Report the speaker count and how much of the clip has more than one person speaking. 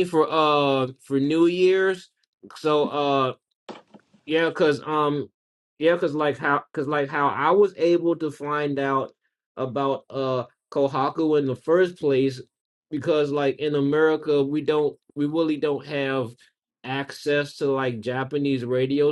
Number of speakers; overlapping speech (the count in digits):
1, no overlap